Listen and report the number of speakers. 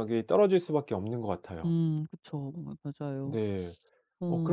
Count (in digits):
2